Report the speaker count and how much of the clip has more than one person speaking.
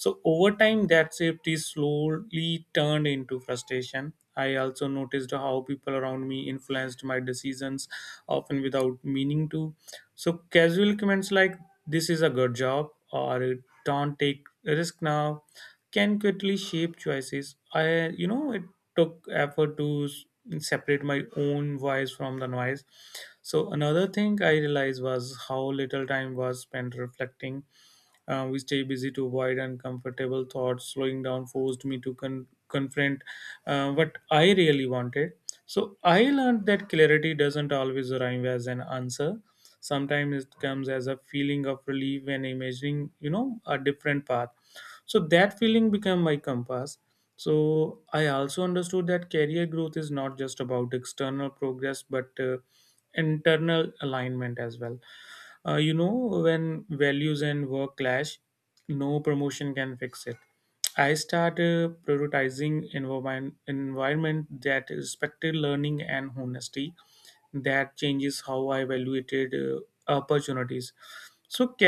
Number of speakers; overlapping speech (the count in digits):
1, no overlap